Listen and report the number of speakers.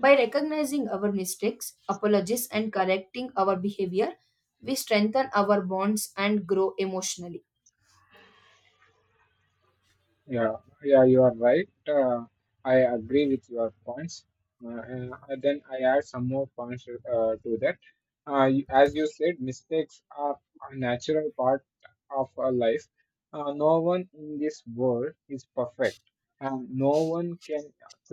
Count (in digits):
2